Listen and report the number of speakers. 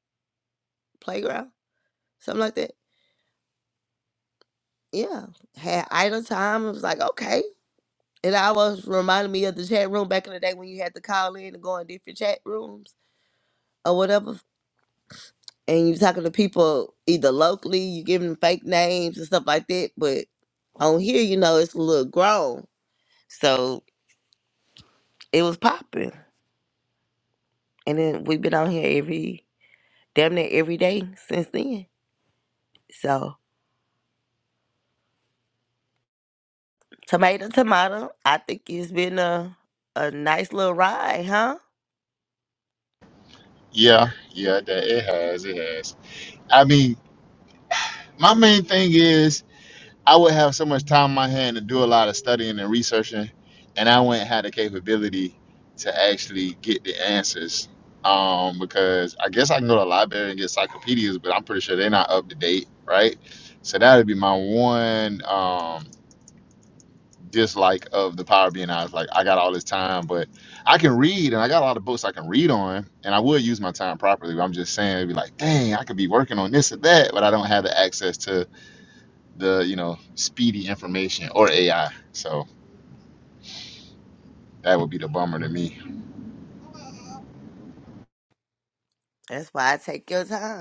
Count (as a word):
two